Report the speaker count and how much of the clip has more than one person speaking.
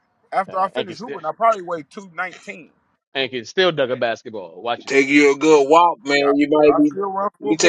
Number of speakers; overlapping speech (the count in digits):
3, about 26%